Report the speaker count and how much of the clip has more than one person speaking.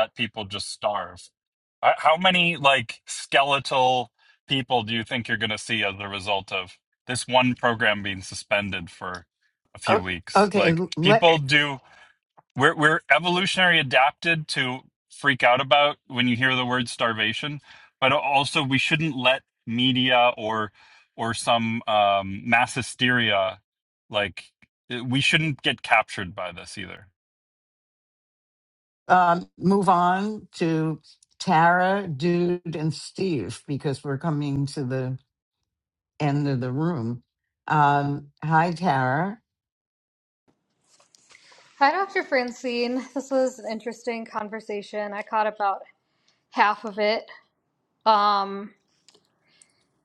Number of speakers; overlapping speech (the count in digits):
3, about 3%